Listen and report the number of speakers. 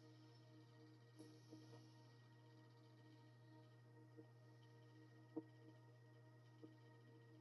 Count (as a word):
zero